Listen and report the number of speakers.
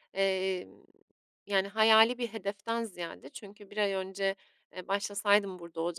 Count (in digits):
1